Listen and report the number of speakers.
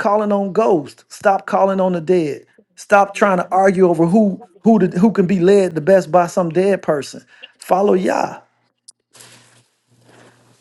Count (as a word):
one